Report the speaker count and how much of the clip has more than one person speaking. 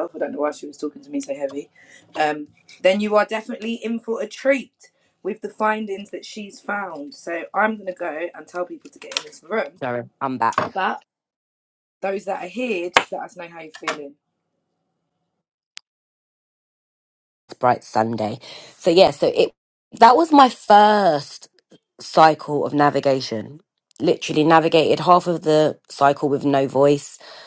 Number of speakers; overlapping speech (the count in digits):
2, no overlap